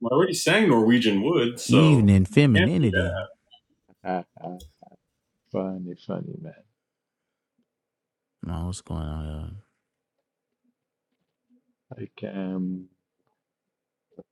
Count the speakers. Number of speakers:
three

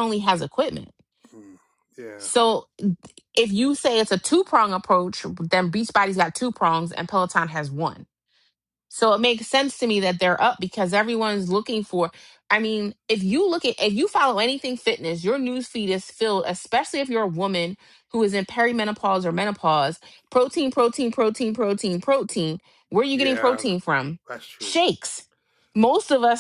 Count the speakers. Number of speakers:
two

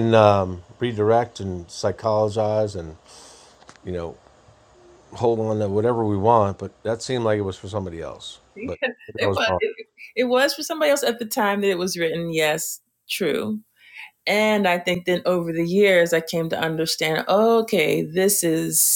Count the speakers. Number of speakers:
two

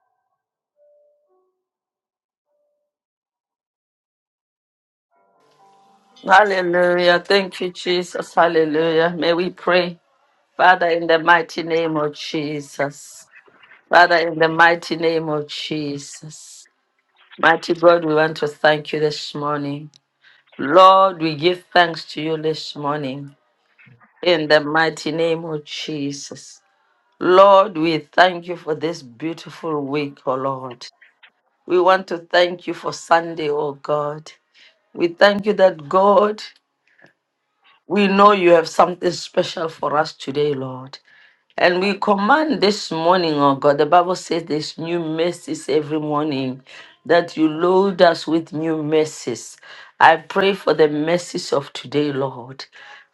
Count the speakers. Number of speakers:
one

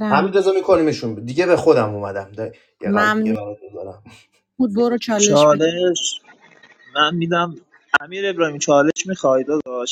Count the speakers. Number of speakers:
three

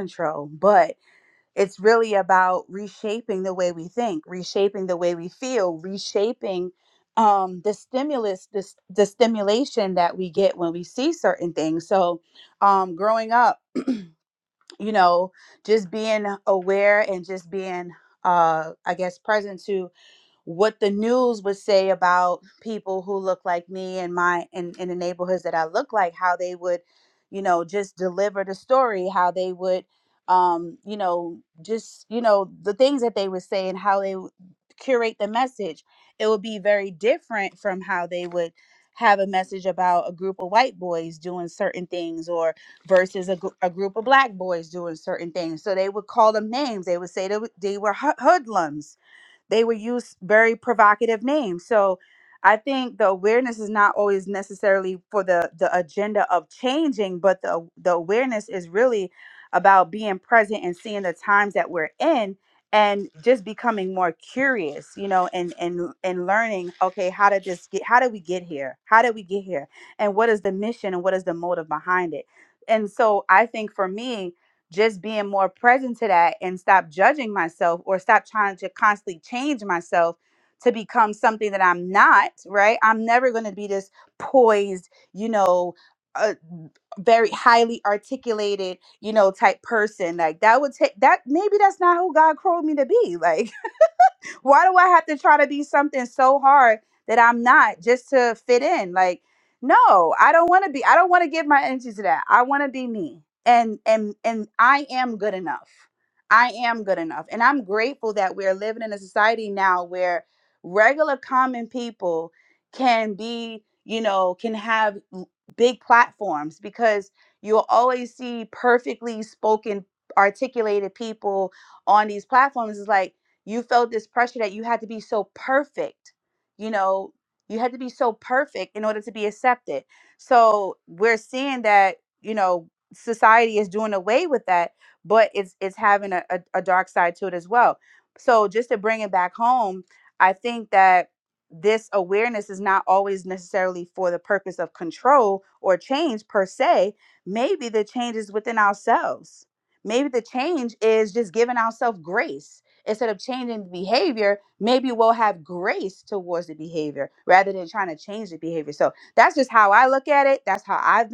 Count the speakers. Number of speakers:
one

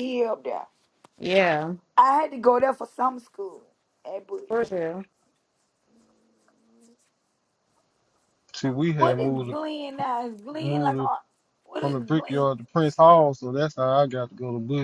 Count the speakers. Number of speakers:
three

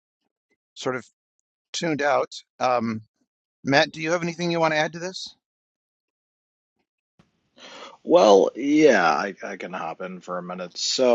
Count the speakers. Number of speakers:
two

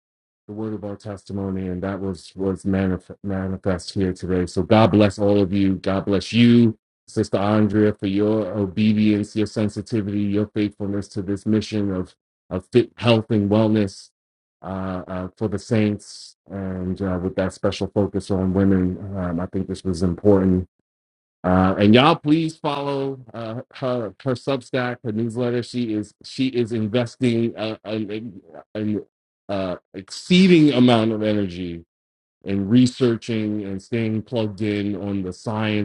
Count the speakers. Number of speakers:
one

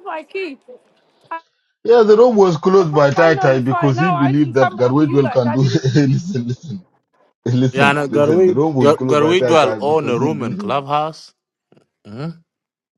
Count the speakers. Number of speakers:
three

